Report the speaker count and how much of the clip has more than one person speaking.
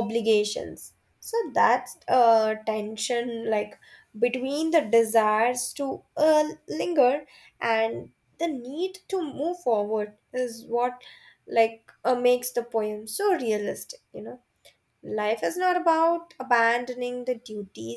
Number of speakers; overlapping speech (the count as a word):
one, no overlap